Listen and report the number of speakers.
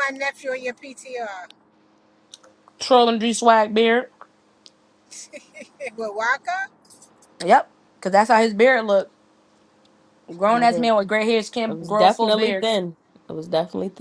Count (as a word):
three